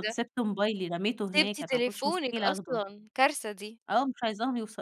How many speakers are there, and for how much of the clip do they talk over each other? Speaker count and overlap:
2, about 34%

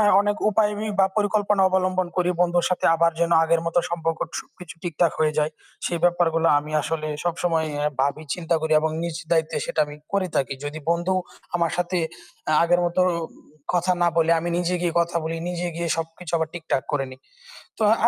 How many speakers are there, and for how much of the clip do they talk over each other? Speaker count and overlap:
1, no overlap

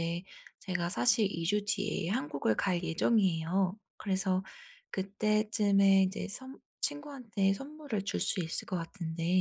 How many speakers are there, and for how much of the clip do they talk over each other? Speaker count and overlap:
1, no overlap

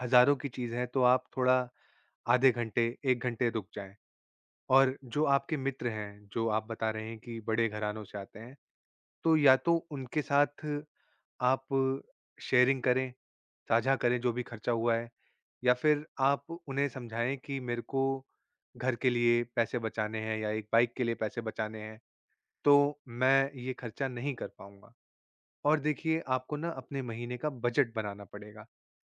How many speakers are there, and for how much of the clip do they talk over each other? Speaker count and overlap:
1, no overlap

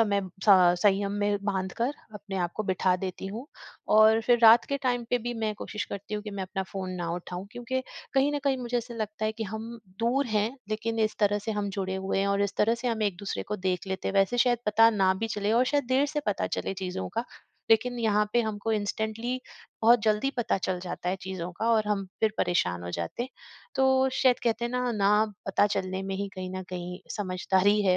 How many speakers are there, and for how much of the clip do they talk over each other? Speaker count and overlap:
1, no overlap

